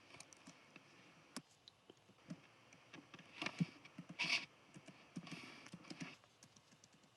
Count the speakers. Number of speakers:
zero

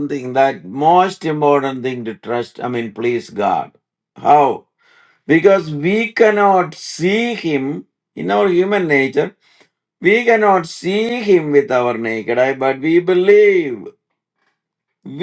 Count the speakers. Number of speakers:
one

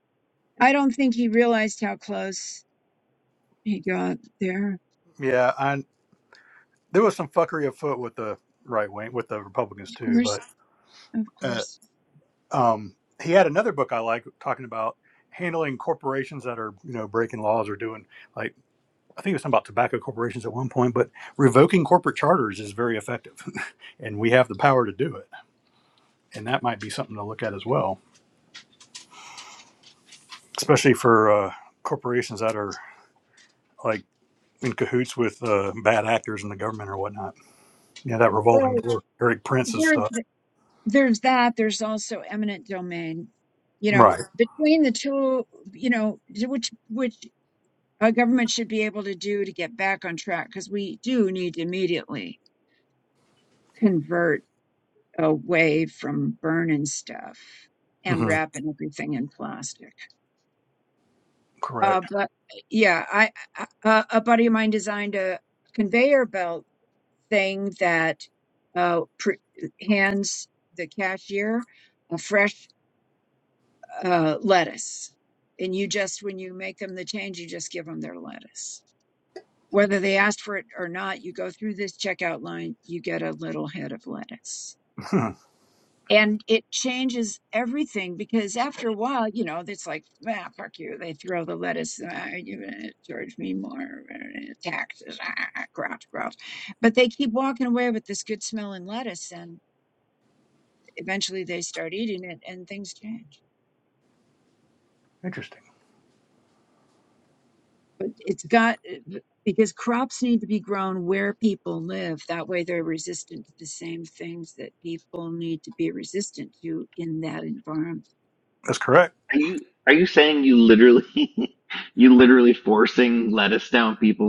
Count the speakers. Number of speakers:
three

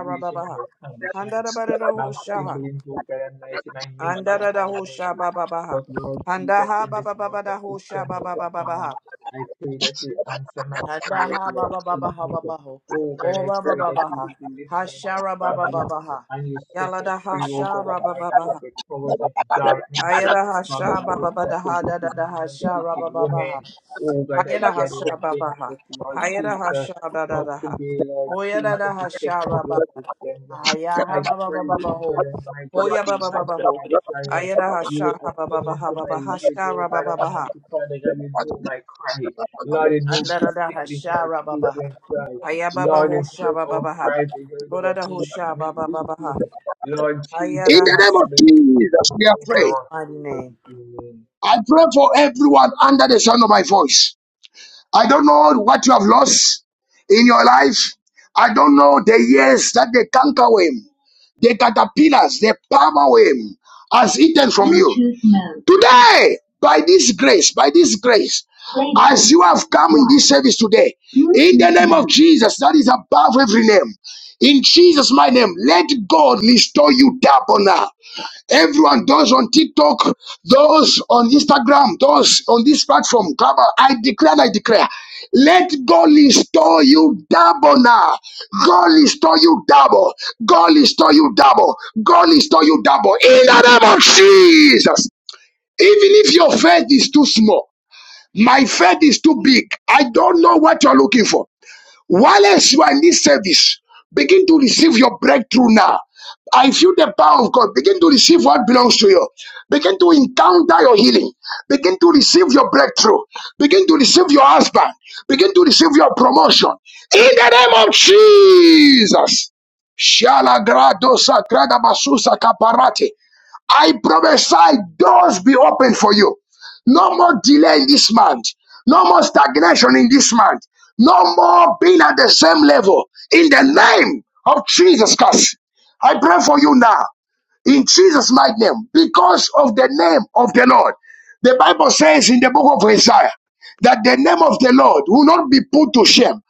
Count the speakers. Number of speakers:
three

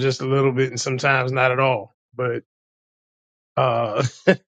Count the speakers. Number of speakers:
one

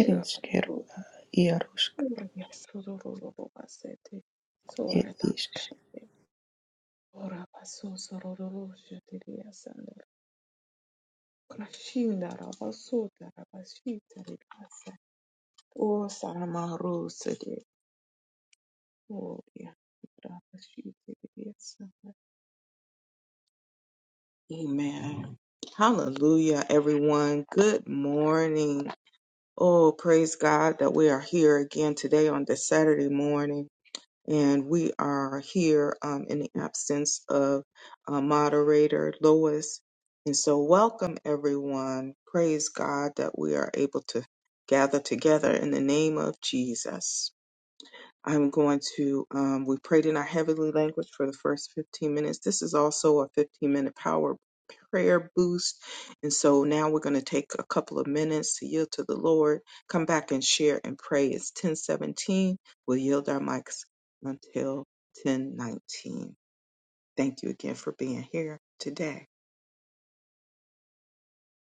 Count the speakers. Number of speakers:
two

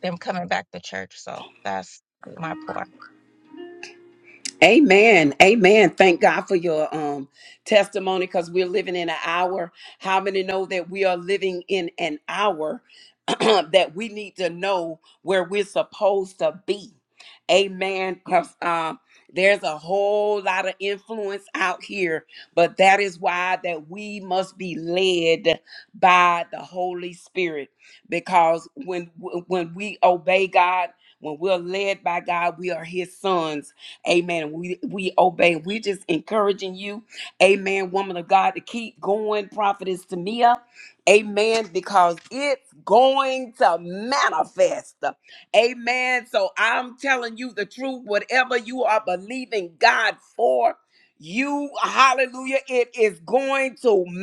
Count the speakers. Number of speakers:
two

